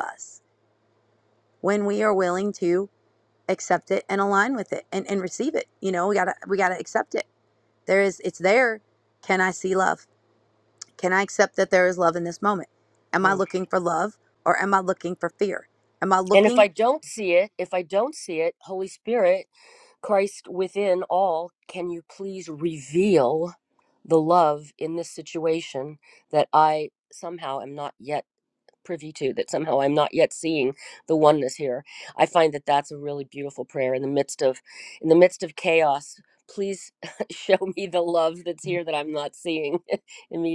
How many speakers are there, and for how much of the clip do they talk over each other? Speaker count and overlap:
2, about 1%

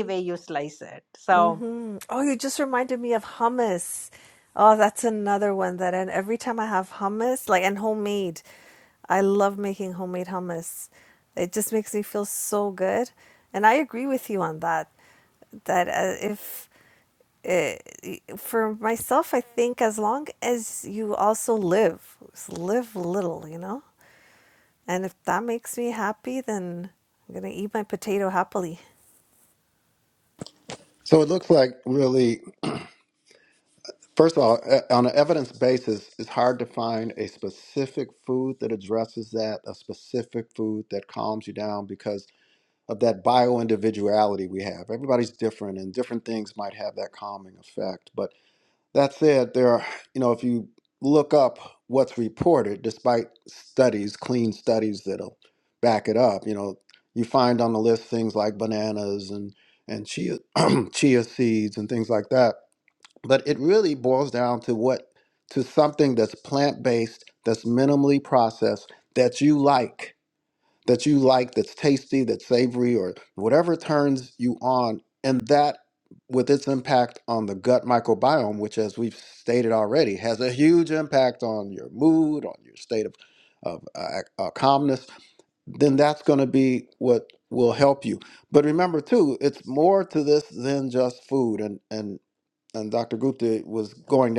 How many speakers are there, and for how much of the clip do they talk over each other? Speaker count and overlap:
3, under 1%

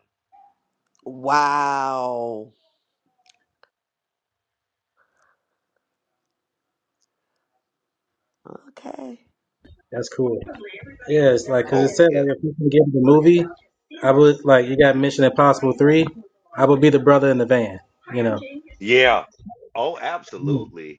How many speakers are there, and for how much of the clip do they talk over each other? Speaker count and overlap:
3, about 4%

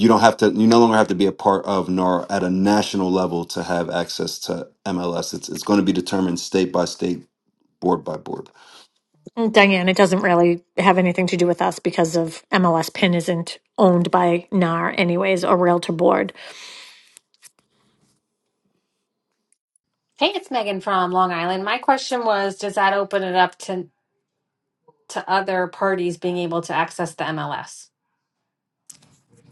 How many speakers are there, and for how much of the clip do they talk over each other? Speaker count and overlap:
3, no overlap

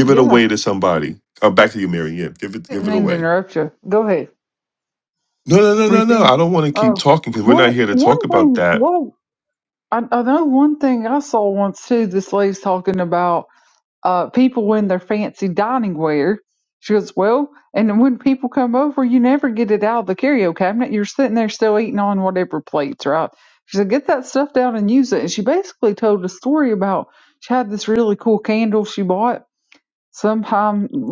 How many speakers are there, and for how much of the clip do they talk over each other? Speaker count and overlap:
2, about 9%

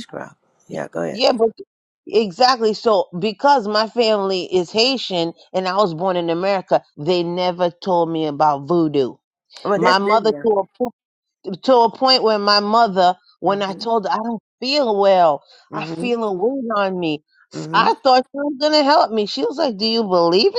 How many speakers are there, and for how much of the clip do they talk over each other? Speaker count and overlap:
2, about 9%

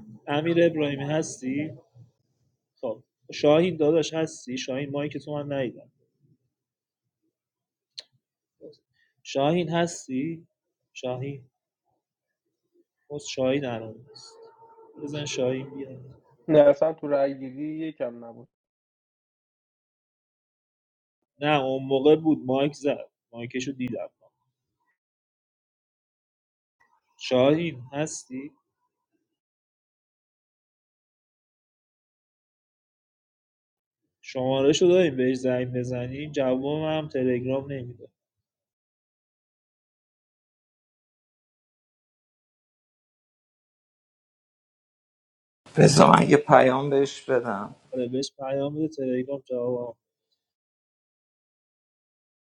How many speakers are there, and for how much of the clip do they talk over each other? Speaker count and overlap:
3, no overlap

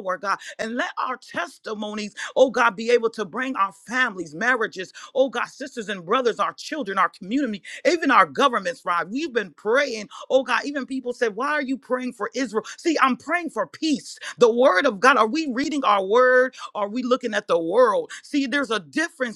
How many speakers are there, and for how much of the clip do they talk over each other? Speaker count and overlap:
1, no overlap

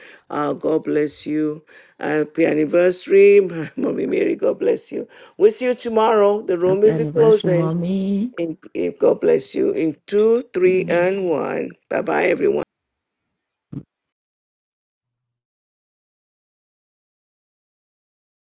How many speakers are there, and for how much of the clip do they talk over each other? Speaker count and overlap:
2, about 6%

